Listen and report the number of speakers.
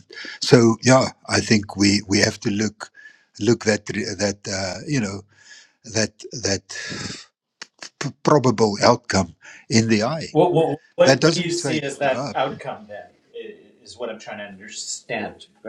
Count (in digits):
2